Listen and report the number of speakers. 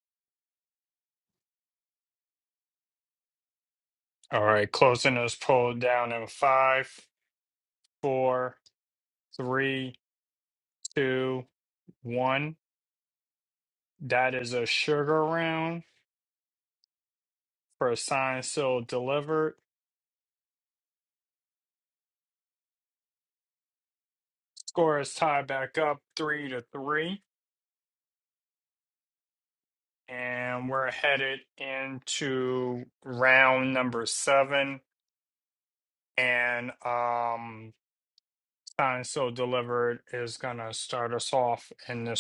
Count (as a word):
one